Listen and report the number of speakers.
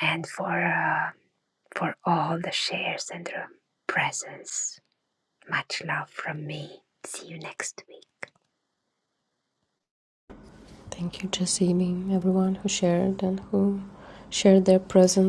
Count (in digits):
2